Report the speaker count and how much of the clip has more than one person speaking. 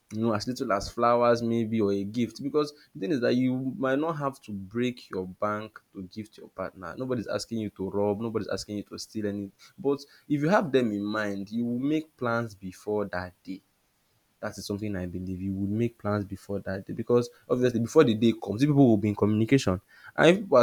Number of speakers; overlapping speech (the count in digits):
1, no overlap